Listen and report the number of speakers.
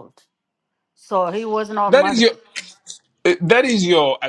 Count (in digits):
2